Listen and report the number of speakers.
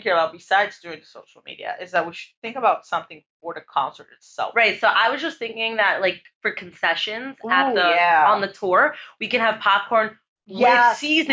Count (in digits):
2